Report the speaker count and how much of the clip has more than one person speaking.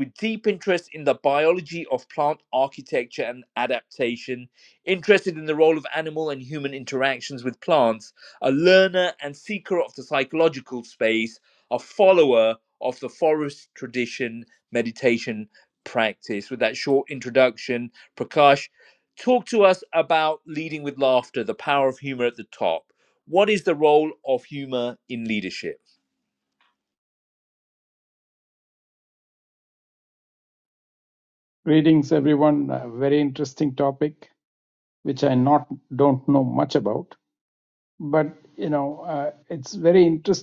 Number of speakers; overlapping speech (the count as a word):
two, no overlap